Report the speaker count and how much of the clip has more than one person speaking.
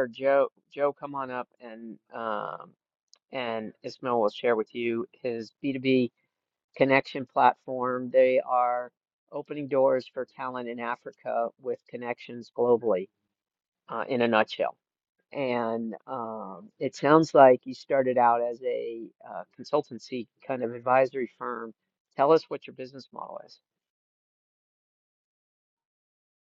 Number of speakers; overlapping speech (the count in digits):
1, no overlap